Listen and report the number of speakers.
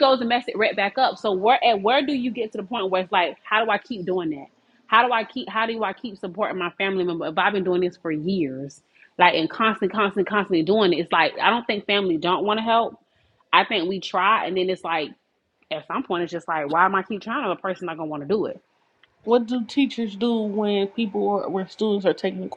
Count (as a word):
two